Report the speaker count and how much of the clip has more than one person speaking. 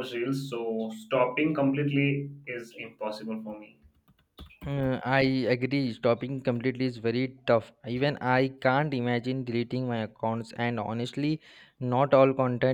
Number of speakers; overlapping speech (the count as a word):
two, no overlap